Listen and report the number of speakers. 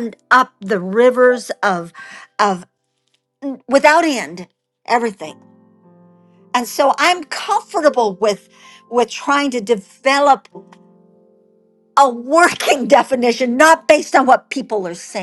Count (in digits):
1